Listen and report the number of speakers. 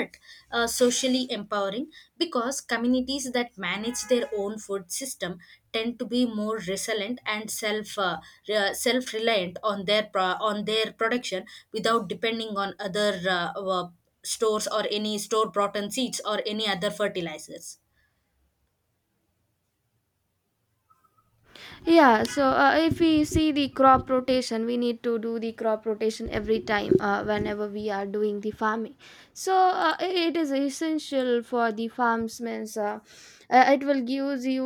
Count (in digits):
2